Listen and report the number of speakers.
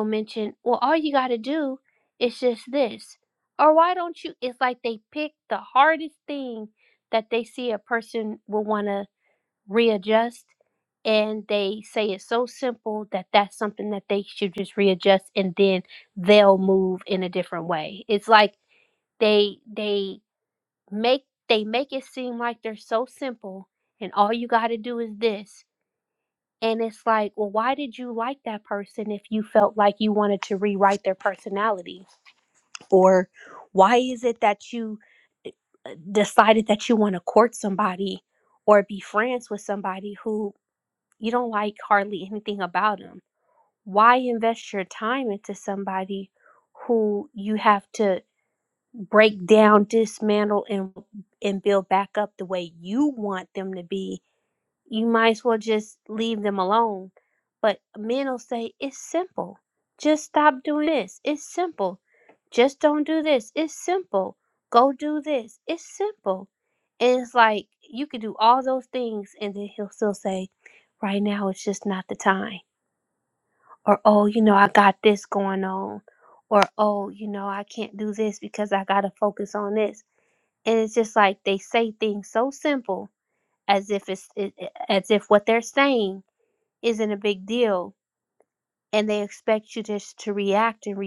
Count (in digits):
1